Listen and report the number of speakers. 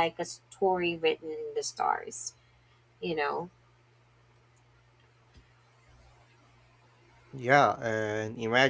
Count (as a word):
two